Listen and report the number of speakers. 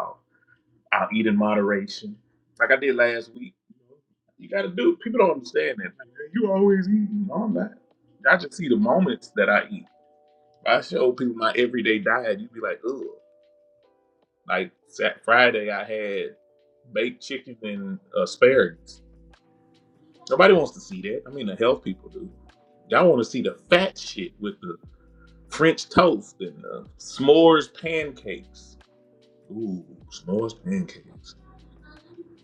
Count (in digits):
1